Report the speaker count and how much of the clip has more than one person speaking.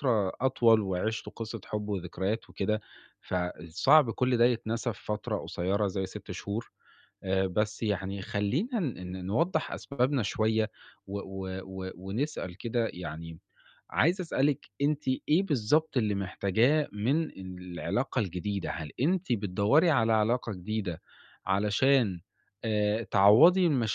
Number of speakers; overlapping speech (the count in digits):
1, no overlap